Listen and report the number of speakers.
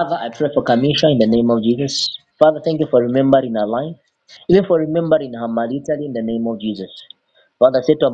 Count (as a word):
one